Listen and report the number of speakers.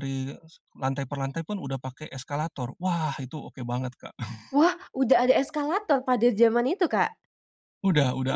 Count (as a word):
two